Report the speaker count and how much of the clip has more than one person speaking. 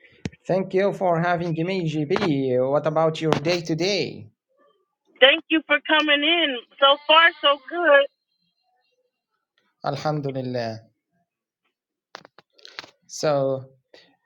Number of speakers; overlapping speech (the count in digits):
2, no overlap